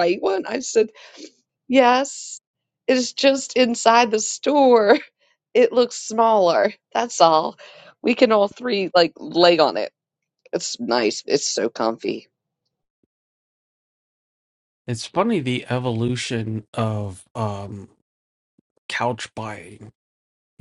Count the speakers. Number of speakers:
2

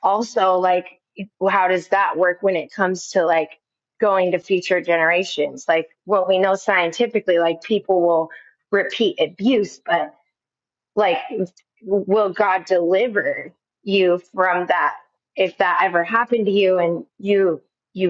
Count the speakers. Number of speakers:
1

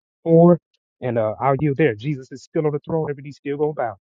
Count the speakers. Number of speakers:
1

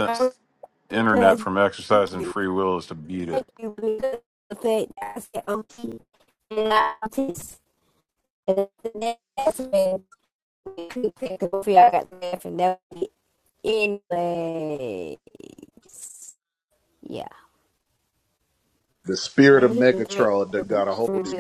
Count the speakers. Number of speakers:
3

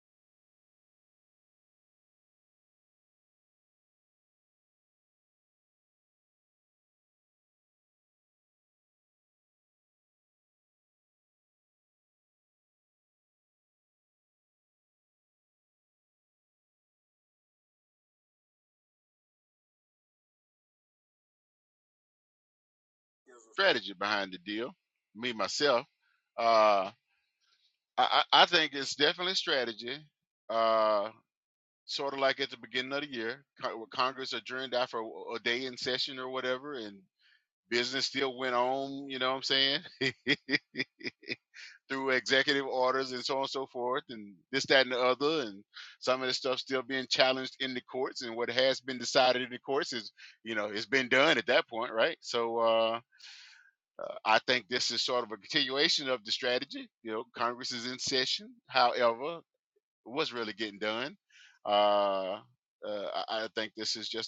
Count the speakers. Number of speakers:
1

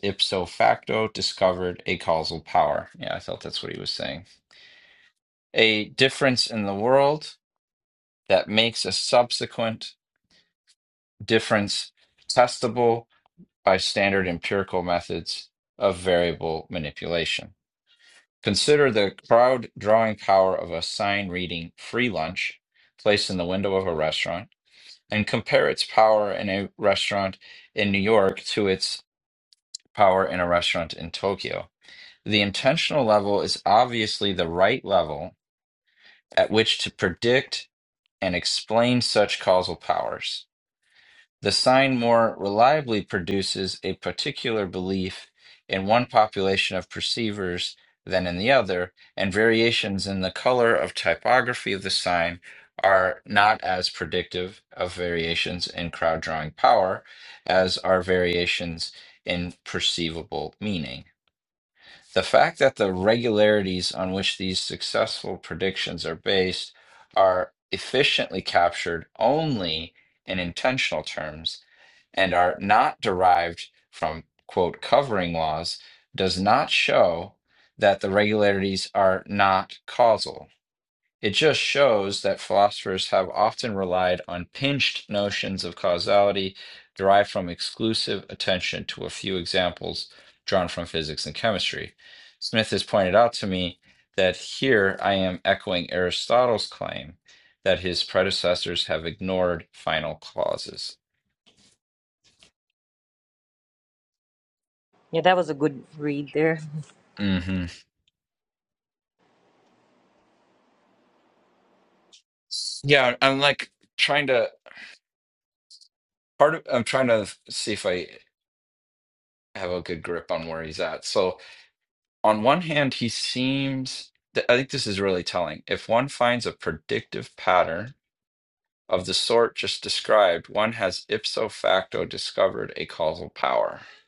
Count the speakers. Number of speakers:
2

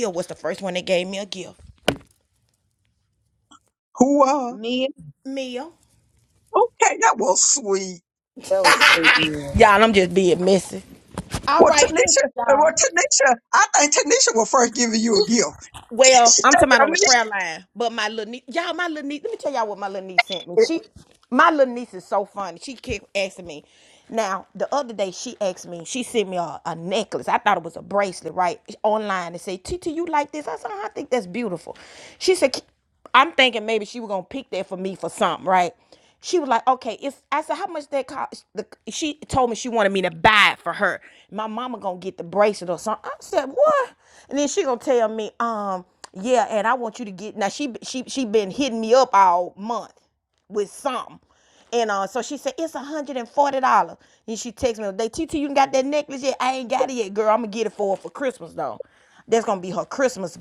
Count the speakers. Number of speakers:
3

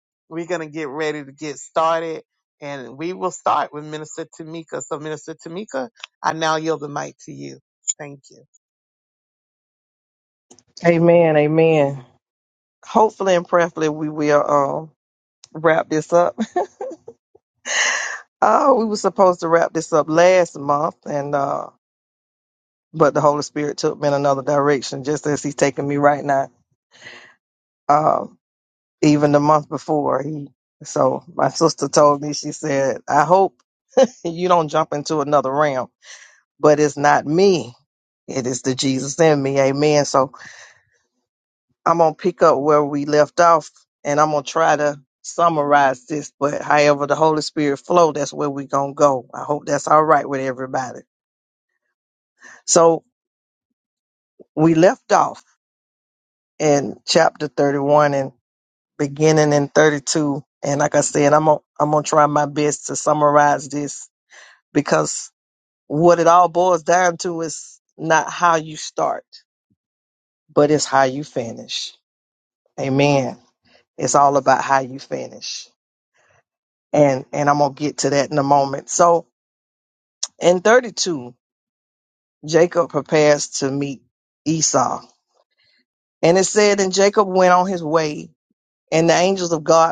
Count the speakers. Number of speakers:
2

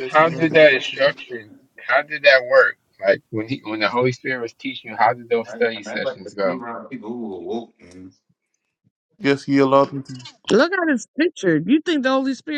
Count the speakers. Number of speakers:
4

